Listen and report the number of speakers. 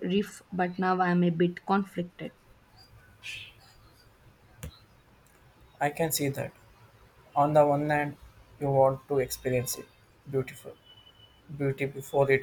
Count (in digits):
2